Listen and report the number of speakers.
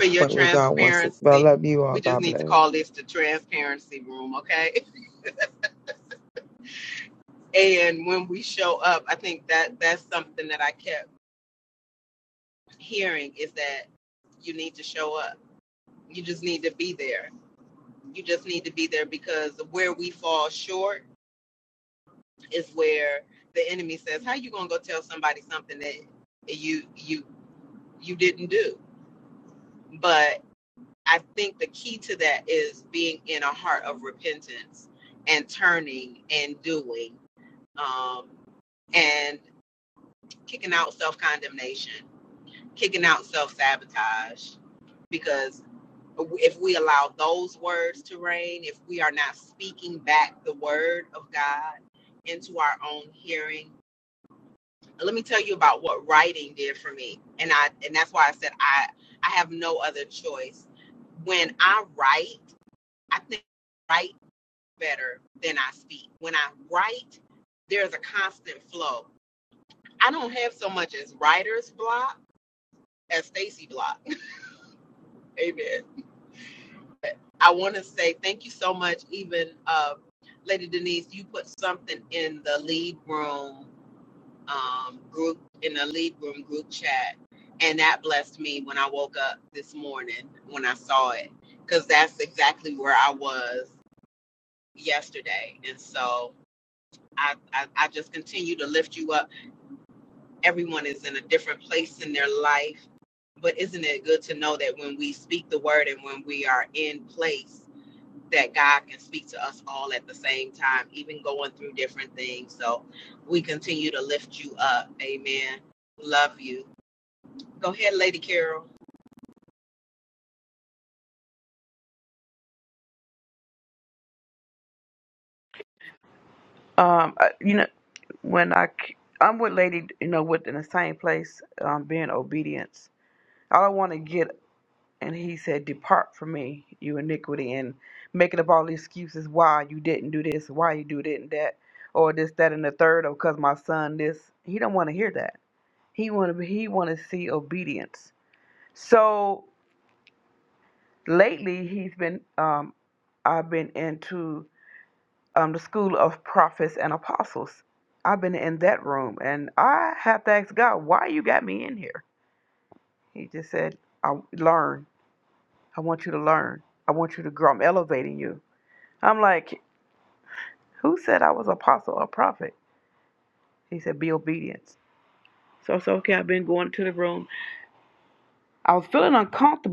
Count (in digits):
3